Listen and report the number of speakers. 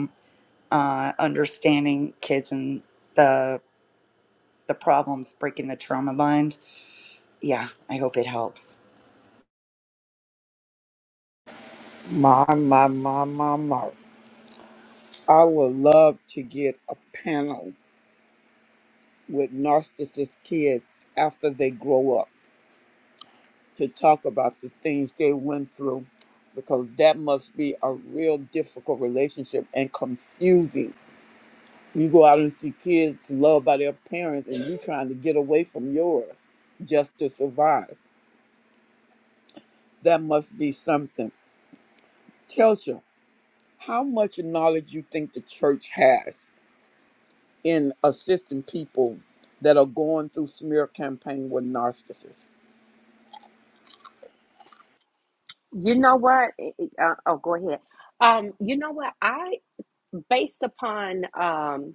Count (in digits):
3